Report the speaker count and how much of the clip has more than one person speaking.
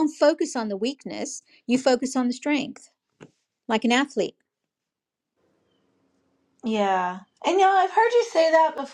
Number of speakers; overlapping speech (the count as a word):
two, no overlap